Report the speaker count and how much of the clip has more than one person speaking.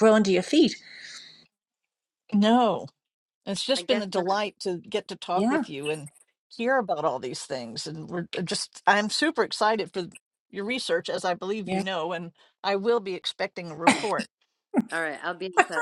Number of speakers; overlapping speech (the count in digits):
3, about 6%